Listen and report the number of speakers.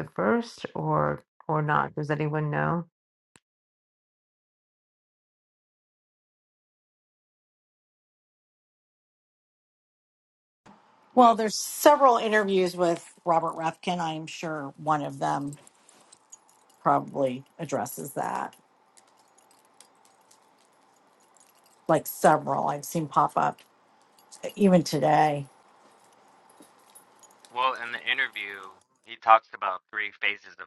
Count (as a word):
three